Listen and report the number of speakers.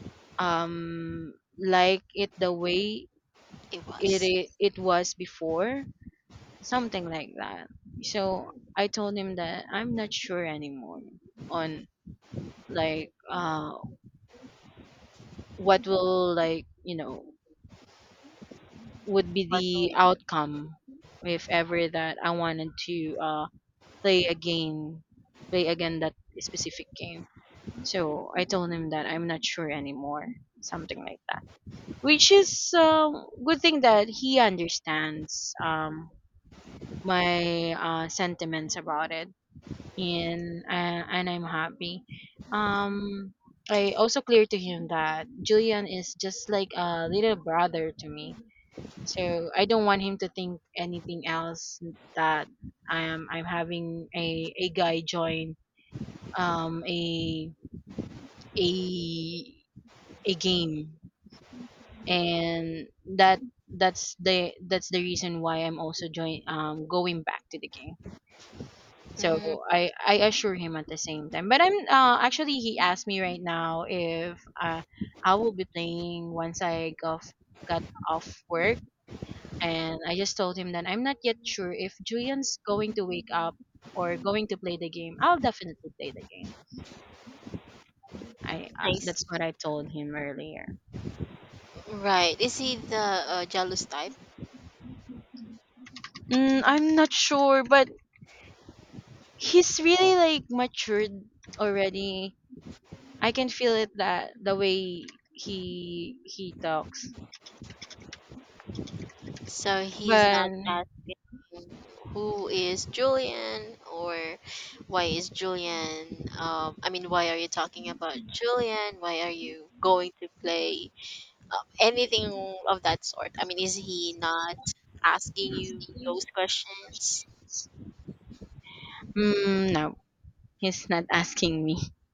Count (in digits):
2